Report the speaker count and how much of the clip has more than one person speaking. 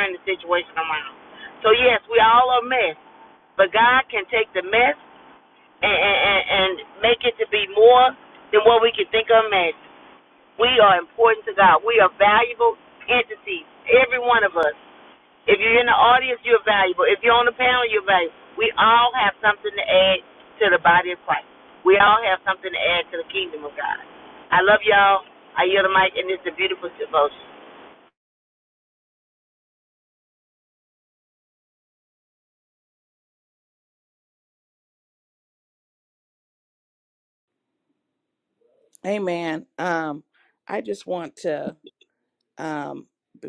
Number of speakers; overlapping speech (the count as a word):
two, no overlap